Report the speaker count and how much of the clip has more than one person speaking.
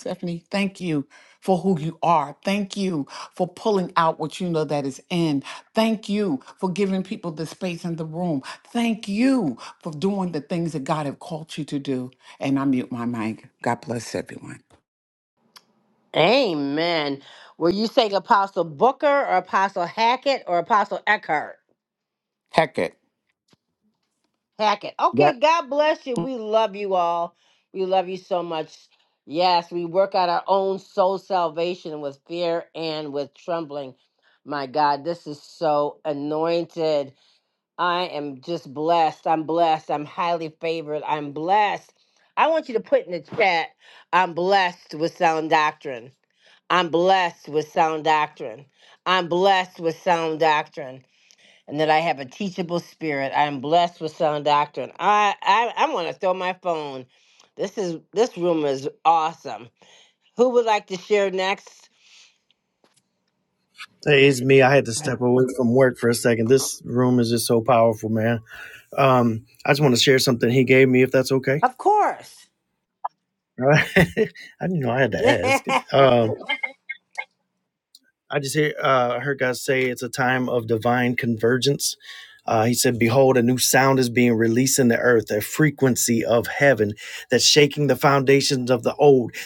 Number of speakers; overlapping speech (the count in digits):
3, no overlap